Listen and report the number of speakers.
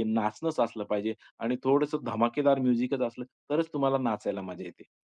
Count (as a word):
one